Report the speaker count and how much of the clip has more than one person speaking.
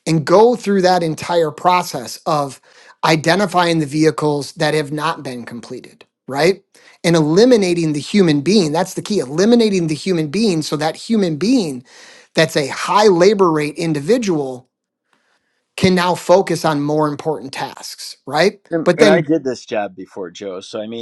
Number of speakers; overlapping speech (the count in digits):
2, about 2%